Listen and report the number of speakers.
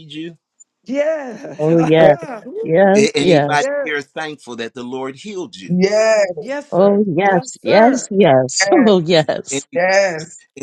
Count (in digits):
4